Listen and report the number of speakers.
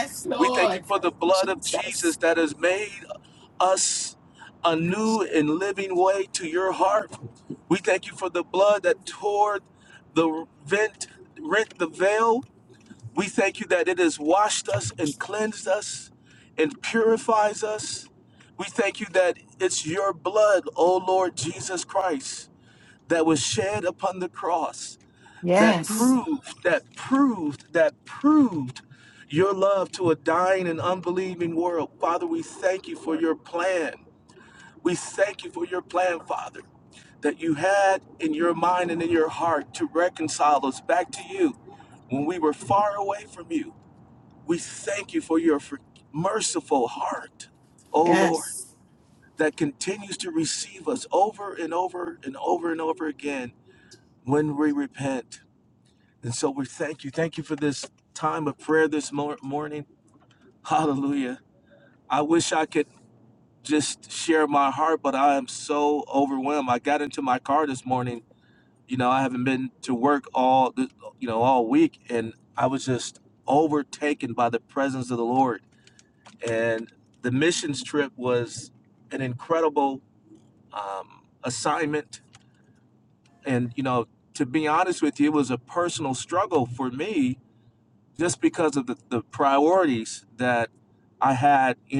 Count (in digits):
2